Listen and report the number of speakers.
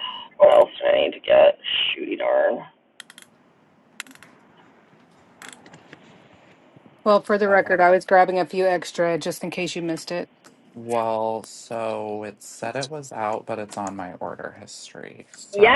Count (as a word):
three